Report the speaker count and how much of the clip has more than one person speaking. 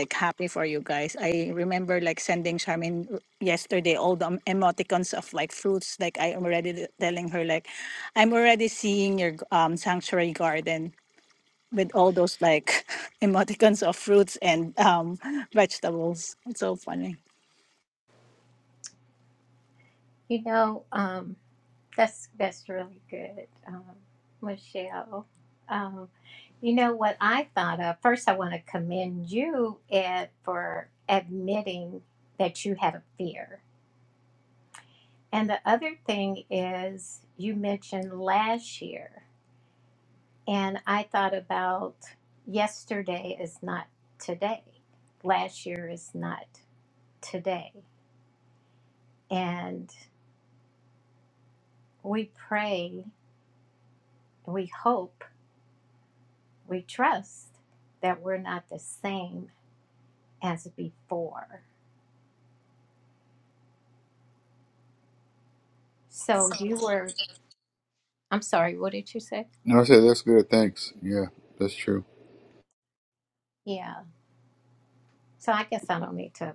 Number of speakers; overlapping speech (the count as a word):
three, no overlap